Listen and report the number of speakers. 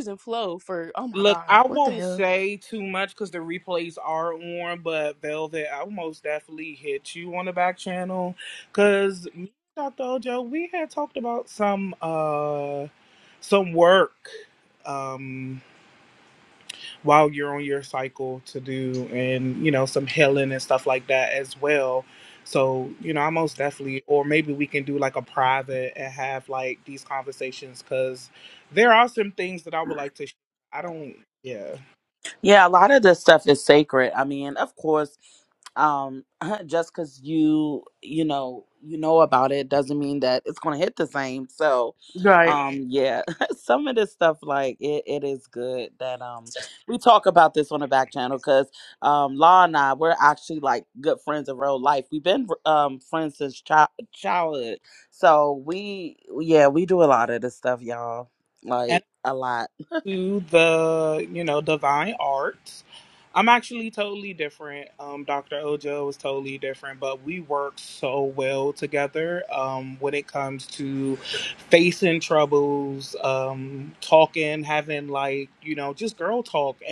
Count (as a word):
three